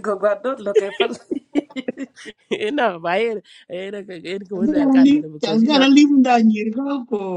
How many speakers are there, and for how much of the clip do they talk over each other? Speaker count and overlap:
3, about 18%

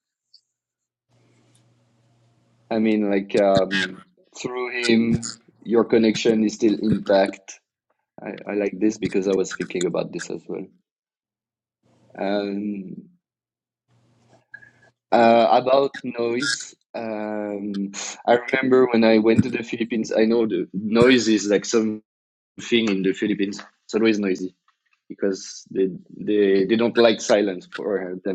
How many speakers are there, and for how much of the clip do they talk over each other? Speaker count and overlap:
1, no overlap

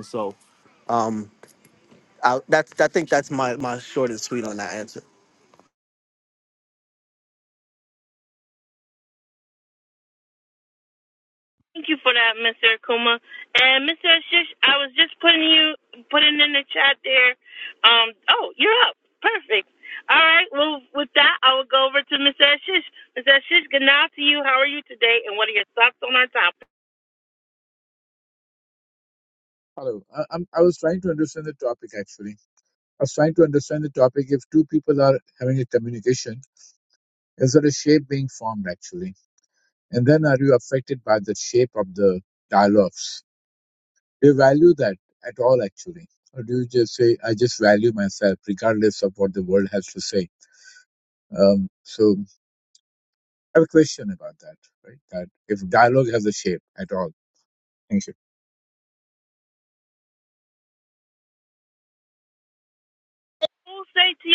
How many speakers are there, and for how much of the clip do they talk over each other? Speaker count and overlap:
3, no overlap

